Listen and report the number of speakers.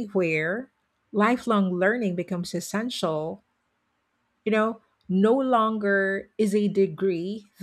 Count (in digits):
1